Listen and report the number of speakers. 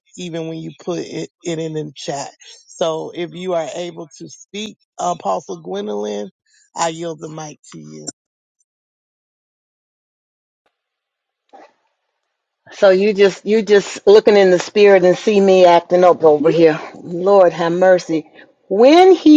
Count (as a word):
two